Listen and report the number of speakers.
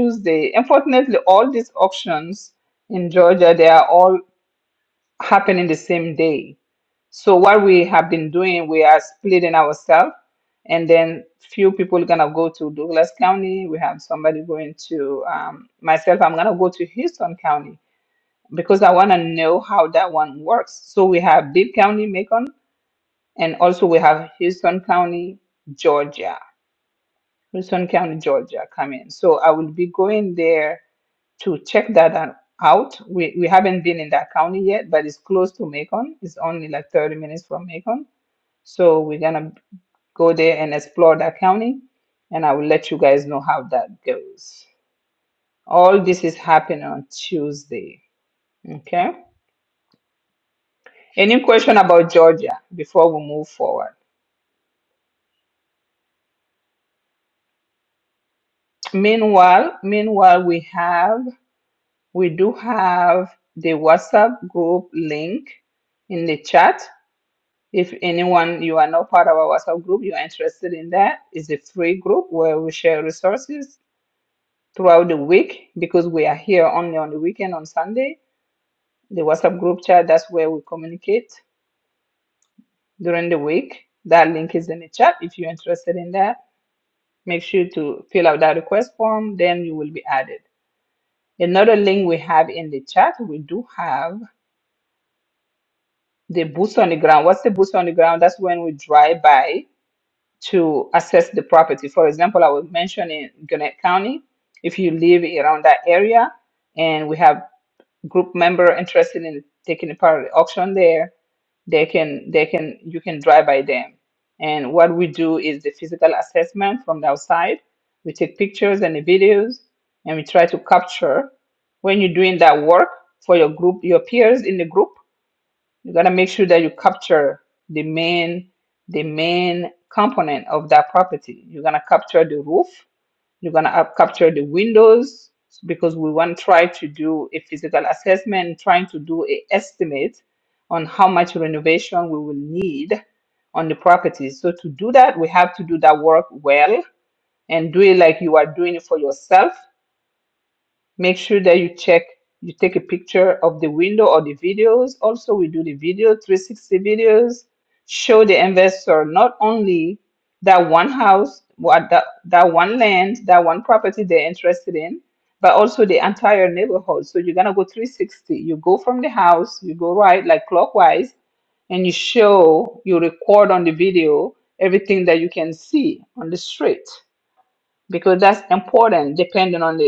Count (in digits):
1